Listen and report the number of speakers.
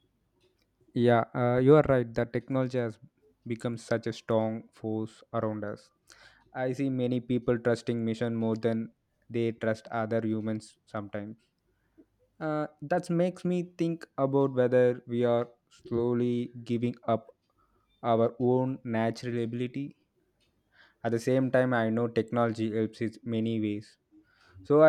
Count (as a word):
one